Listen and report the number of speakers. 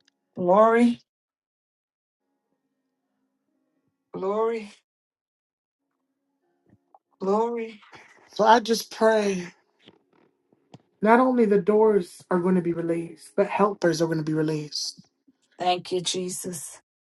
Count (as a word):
two